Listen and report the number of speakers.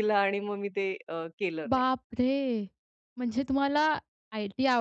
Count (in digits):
2